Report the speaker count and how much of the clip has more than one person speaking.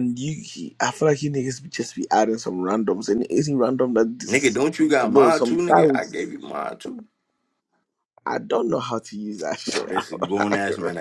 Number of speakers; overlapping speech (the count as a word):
two, about 21%